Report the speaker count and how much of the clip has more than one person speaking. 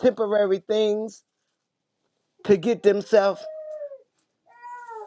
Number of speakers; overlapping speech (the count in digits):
1, no overlap